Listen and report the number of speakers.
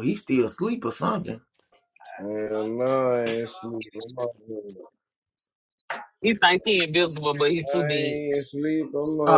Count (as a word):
three